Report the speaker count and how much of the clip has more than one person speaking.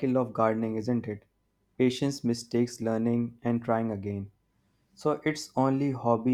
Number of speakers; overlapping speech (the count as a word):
one, no overlap